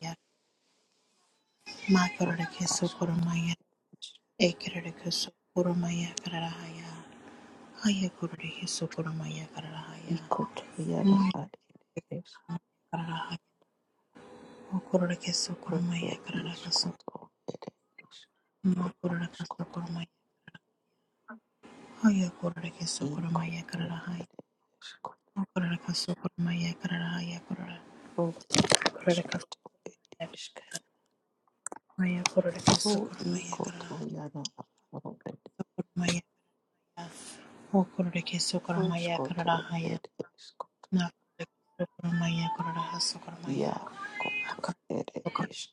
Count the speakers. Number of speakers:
2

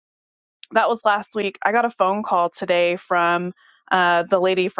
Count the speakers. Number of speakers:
1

